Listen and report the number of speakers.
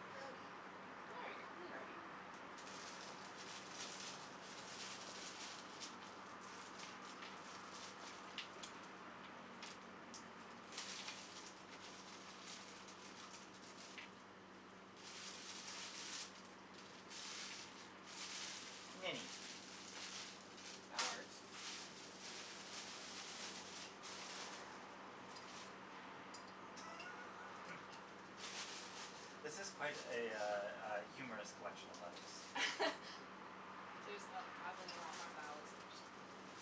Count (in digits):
3